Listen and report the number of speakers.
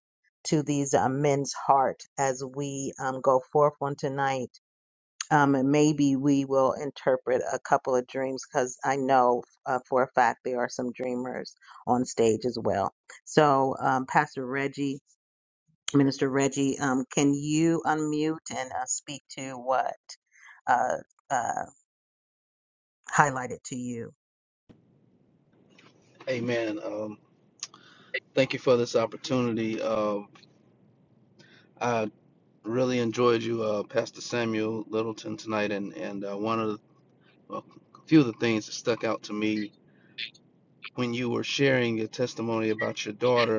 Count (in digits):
2